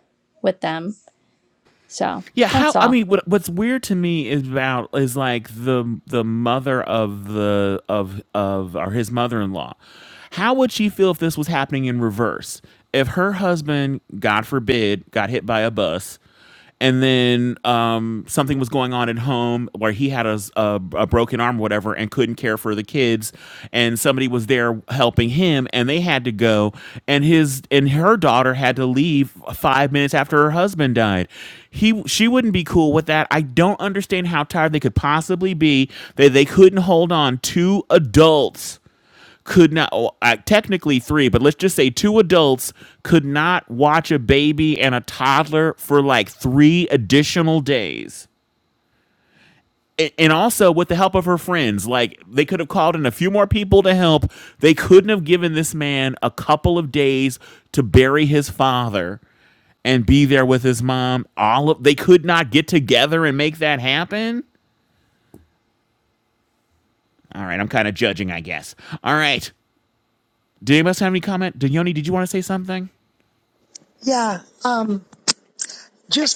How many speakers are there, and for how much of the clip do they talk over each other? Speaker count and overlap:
3, about 1%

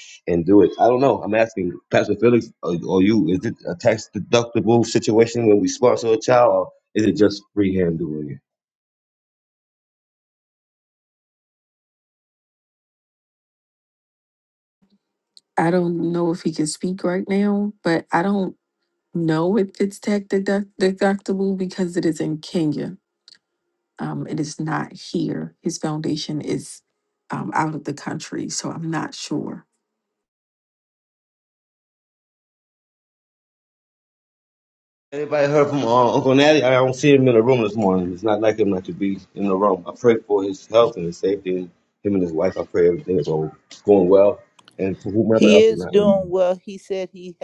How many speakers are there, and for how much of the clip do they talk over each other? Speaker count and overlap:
3, about 1%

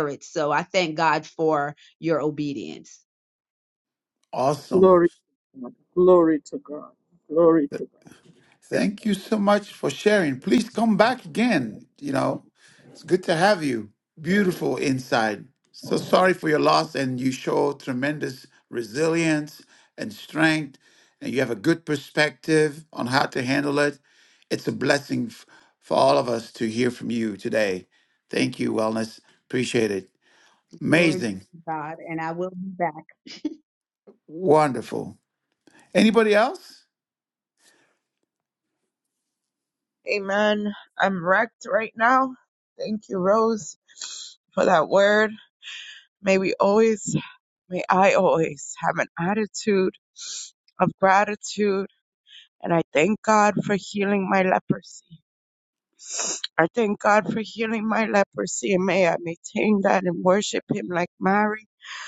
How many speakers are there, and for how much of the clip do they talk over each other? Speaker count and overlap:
4, about 1%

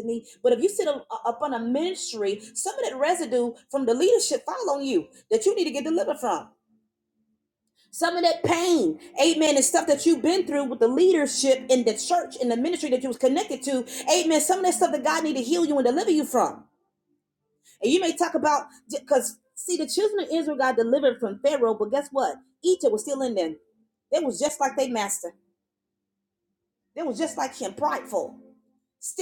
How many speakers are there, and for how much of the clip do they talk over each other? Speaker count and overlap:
1, no overlap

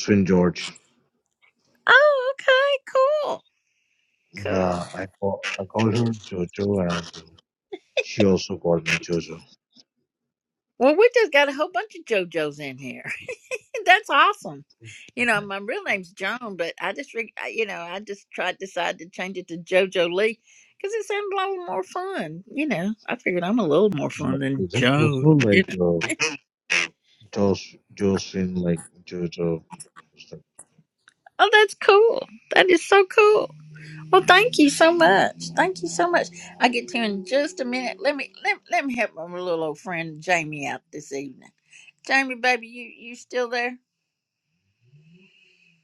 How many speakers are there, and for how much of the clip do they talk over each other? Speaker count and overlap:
2, about 4%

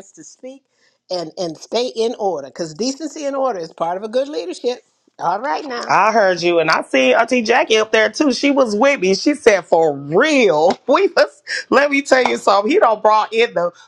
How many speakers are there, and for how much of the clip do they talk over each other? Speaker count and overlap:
2, about 1%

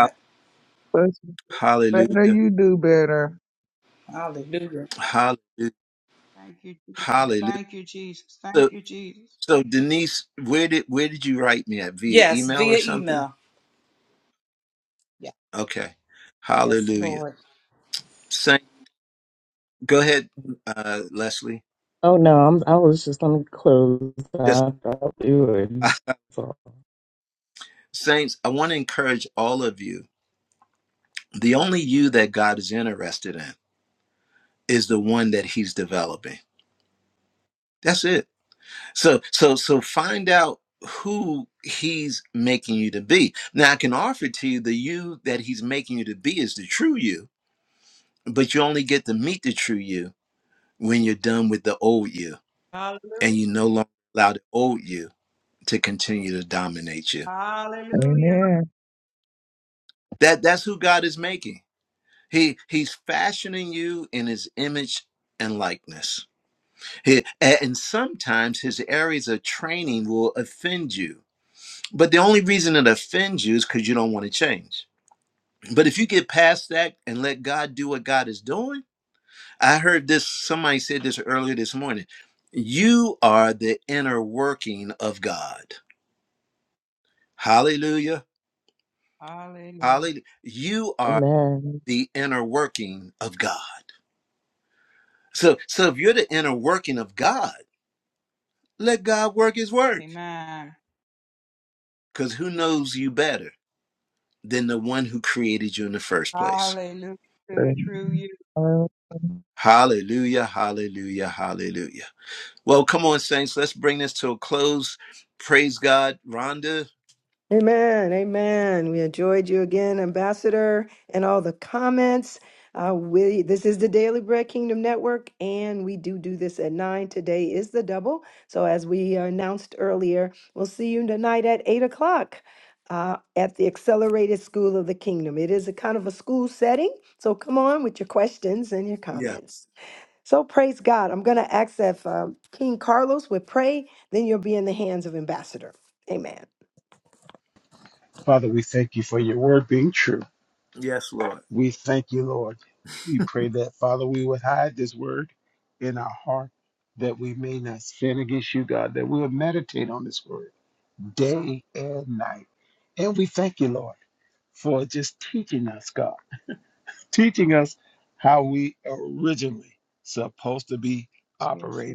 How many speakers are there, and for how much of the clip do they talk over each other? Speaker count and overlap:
7, about 4%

